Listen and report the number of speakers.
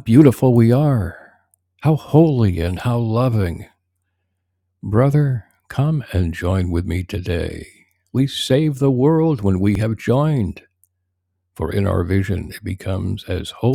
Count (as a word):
one